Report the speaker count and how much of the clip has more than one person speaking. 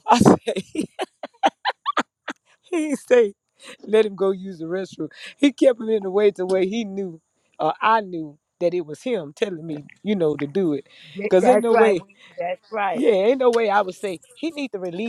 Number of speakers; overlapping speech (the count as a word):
two, about 6%